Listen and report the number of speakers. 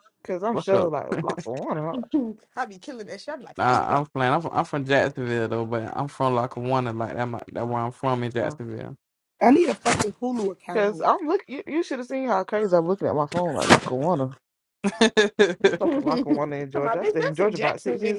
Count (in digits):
4